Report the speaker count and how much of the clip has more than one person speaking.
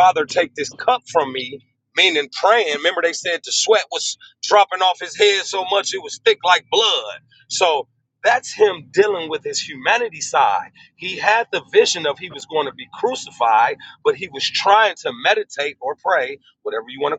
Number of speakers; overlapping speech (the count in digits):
1, no overlap